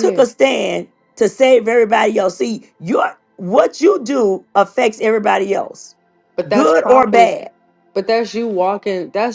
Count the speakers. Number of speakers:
2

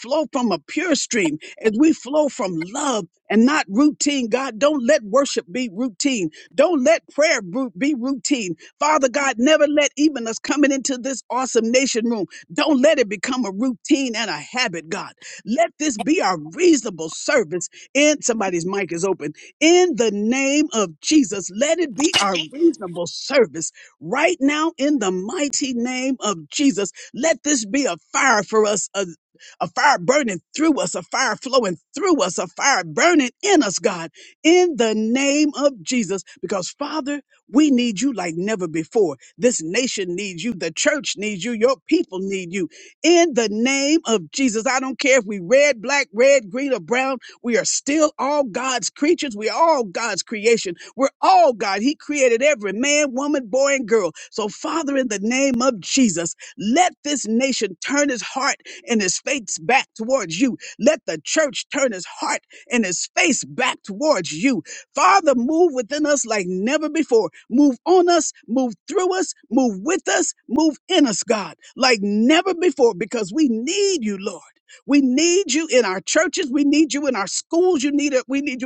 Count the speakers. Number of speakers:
1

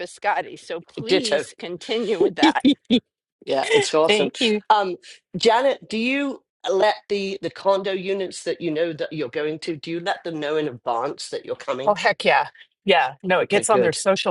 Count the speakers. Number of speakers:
3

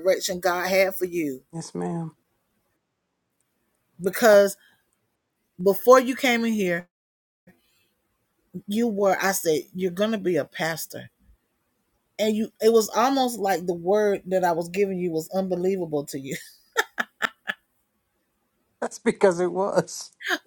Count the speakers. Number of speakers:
2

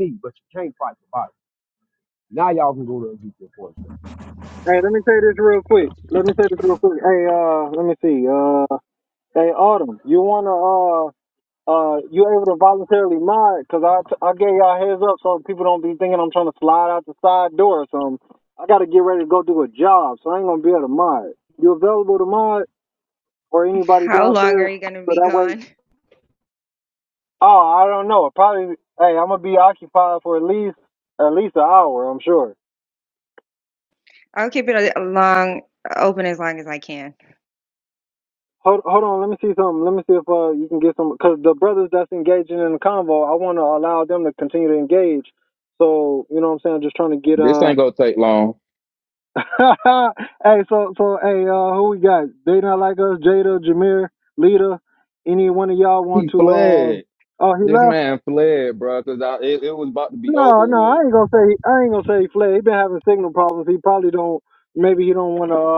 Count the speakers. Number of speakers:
4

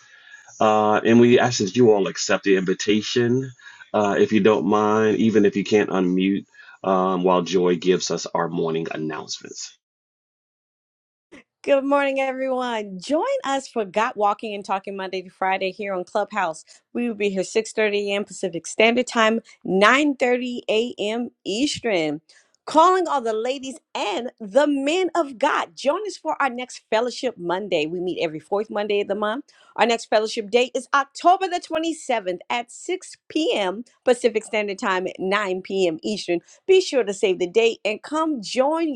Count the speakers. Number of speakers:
2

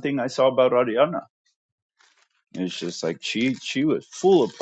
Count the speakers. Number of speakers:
1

